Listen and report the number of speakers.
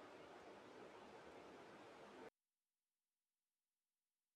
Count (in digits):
0